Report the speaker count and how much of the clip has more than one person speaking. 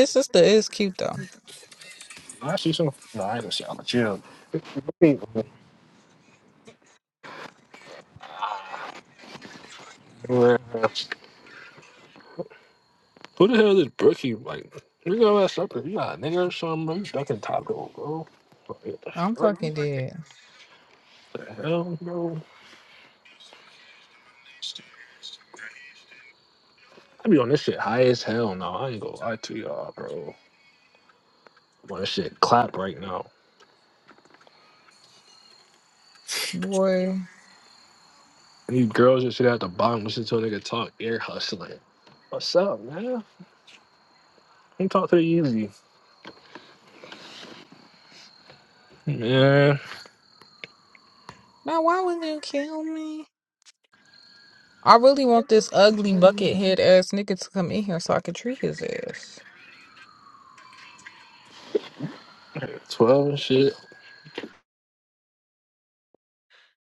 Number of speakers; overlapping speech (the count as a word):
two, no overlap